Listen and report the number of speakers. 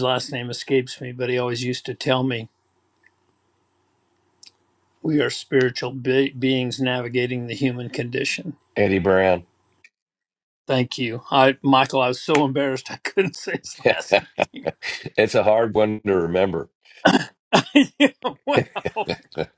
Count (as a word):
two